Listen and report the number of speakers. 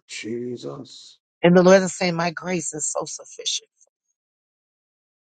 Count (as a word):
two